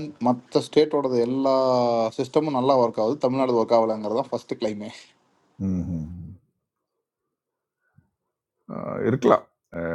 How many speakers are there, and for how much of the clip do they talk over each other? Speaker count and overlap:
2, no overlap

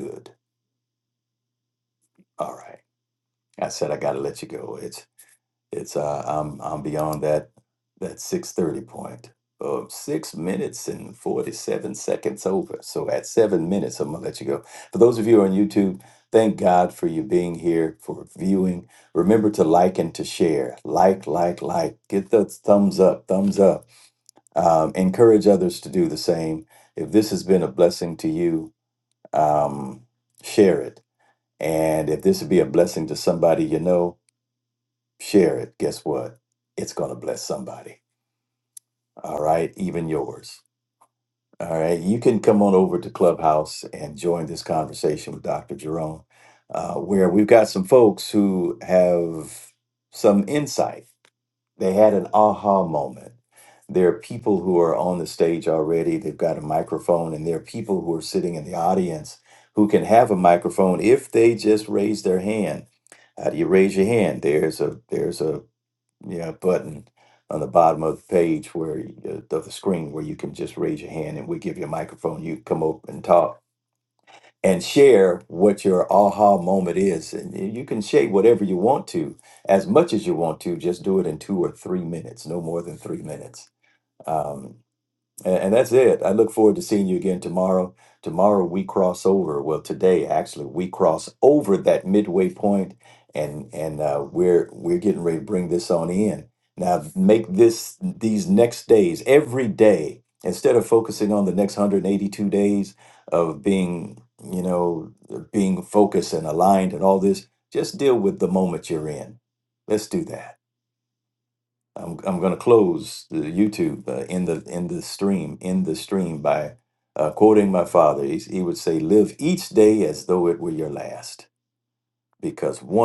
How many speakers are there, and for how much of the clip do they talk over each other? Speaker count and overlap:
1, no overlap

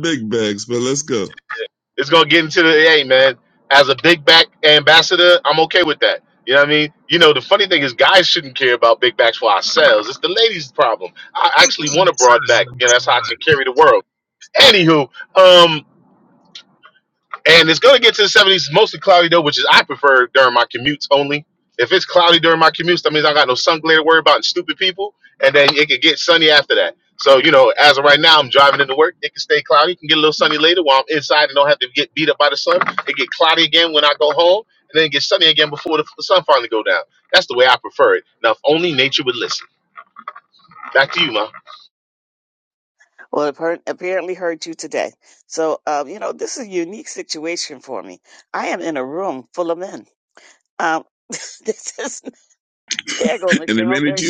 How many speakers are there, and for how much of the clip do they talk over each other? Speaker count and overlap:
3, about 1%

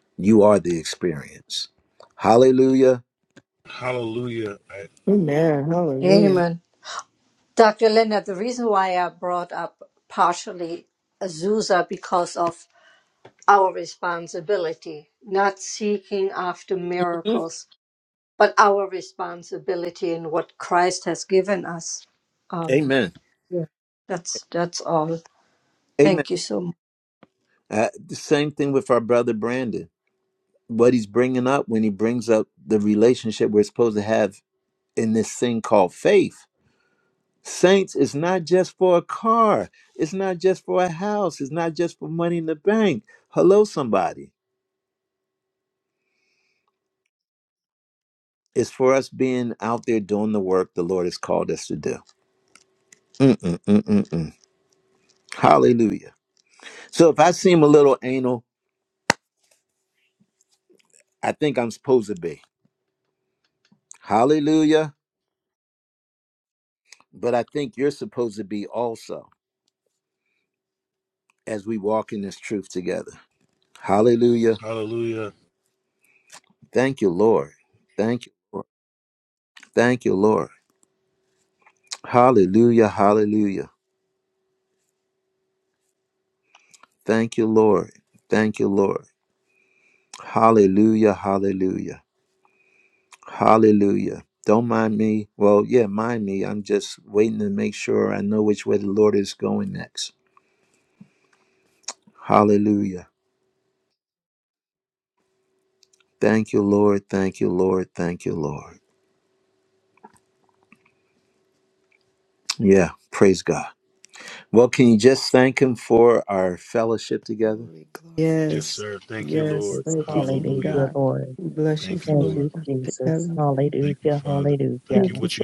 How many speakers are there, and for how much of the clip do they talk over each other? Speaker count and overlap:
5, about 4%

